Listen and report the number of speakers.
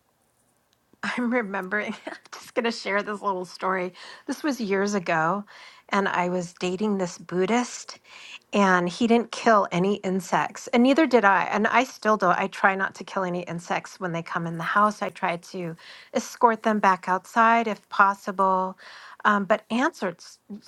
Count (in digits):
1